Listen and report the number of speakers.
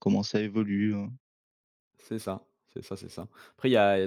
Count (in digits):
2